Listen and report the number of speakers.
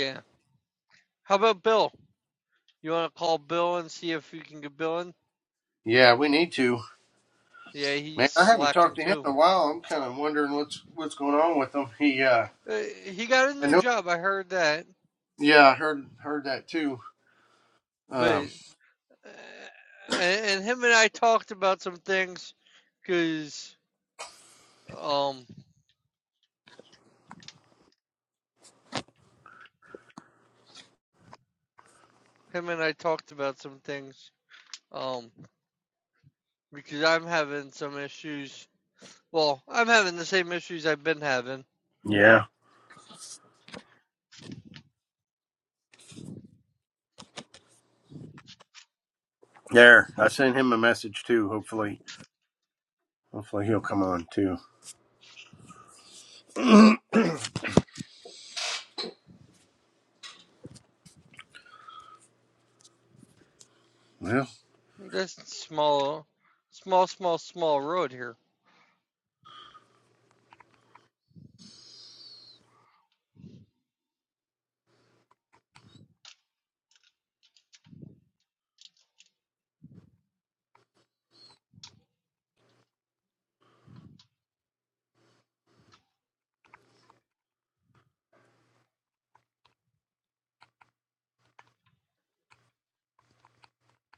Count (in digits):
2